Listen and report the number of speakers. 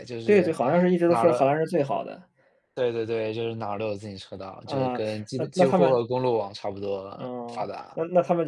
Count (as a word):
two